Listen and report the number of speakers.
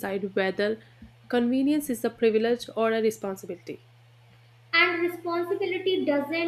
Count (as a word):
two